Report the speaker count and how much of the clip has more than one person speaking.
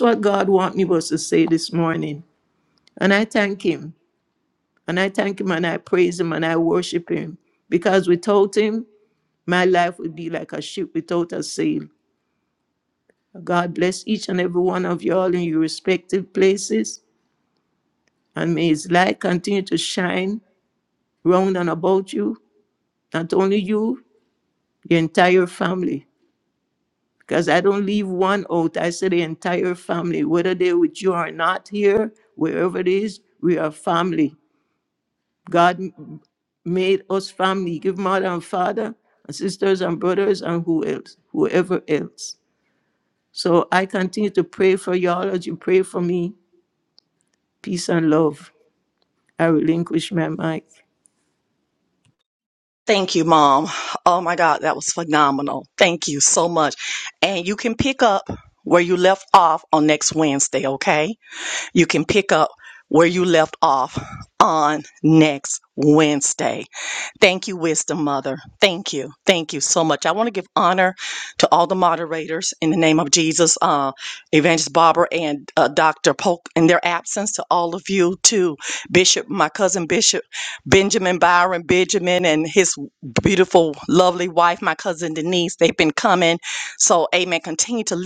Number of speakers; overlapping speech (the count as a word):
two, no overlap